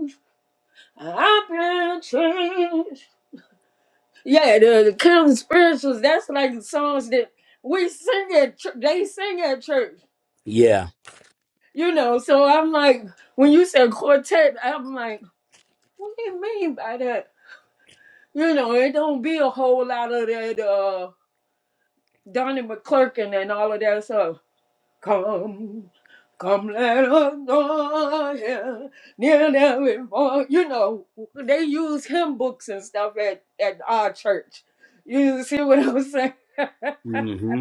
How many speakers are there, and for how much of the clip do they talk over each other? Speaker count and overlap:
2, no overlap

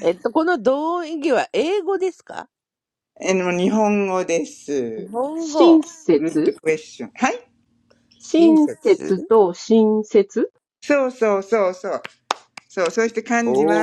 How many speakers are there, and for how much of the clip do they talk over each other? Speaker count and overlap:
3, about 14%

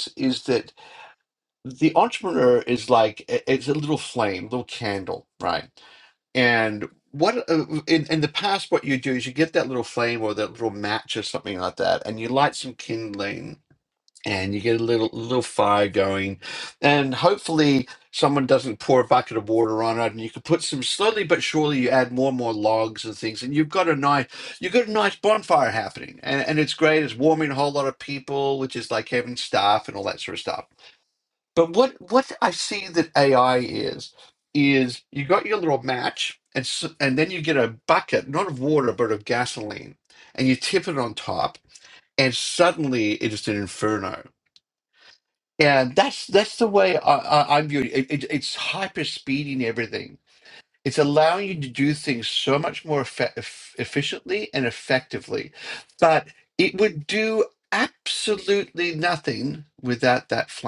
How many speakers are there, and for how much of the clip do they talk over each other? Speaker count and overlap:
1, no overlap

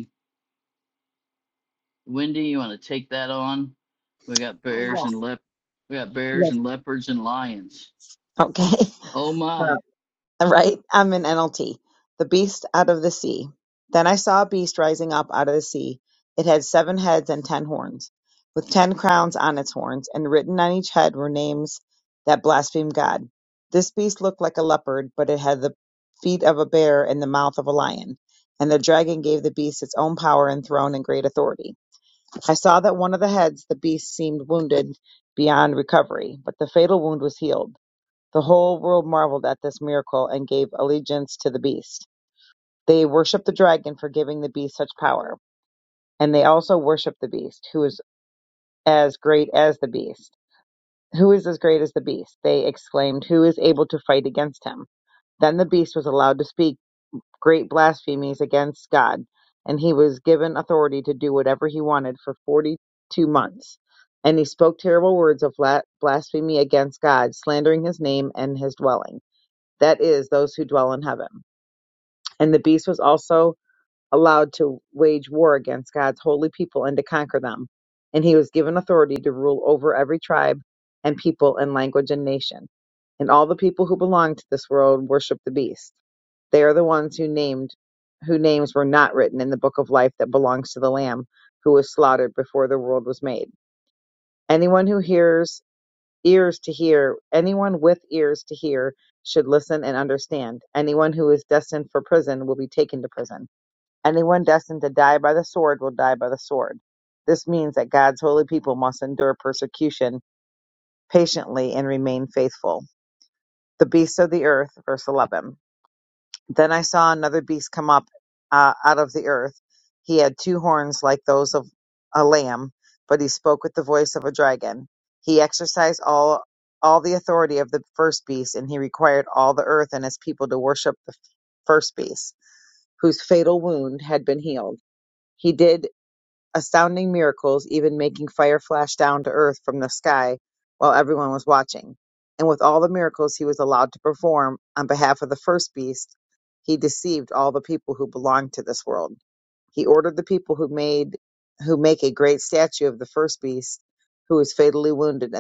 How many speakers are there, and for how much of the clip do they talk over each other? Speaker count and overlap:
2, under 1%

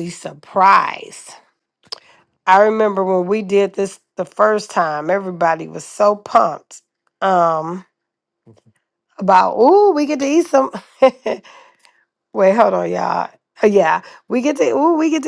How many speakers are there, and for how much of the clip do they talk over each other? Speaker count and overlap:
1, no overlap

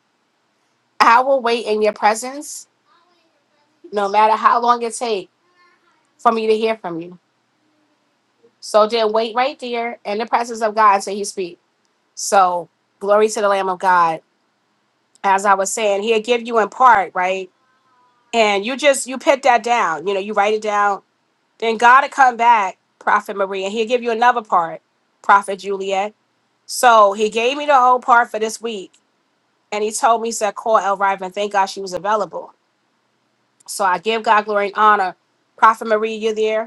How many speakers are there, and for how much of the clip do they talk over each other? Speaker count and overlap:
1, no overlap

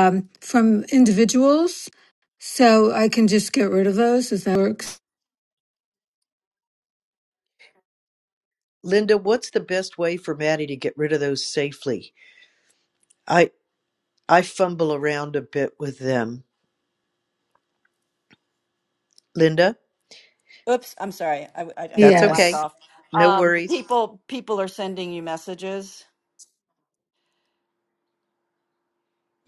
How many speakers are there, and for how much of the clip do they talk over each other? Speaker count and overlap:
3, about 4%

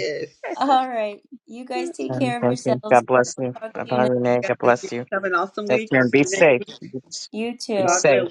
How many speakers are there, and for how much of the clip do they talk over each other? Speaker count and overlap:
3, about 38%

